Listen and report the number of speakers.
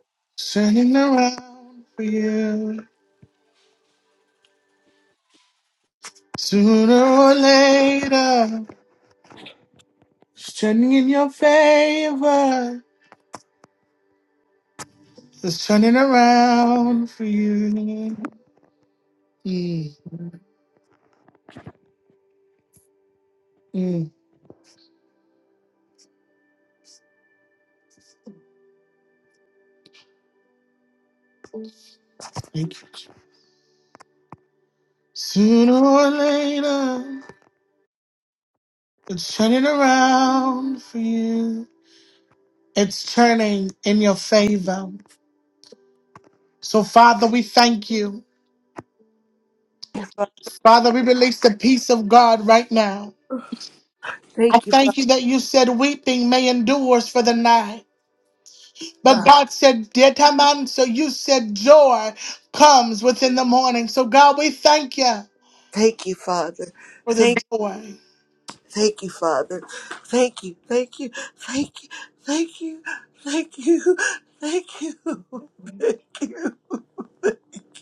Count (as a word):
two